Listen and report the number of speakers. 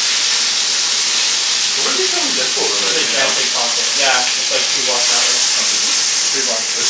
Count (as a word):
two